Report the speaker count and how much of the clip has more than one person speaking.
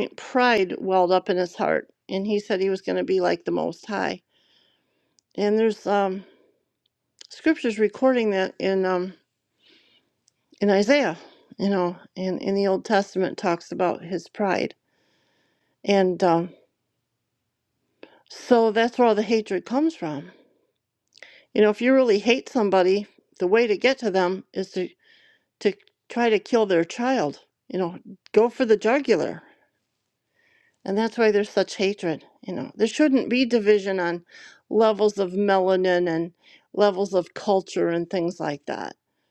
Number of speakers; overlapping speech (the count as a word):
one, no overlap